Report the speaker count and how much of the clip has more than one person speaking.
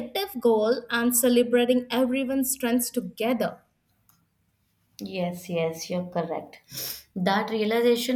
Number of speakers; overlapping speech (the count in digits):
2, no overlap